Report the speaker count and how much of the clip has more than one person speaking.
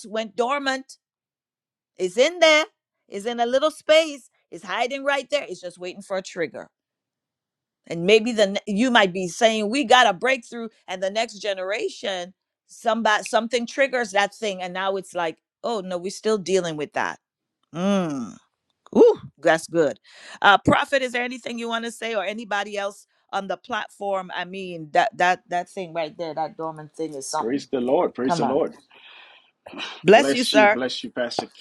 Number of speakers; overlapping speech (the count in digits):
2, about 3%